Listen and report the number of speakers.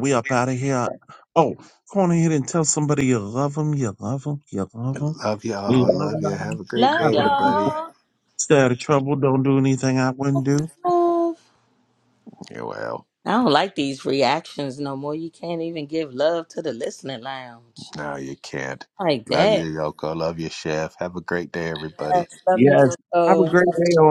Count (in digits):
3